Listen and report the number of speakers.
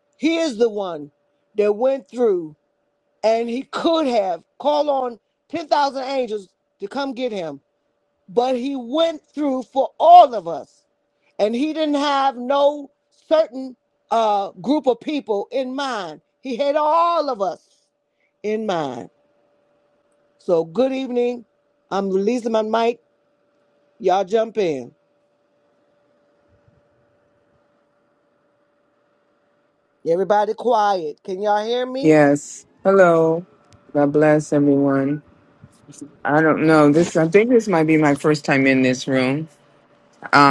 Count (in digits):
2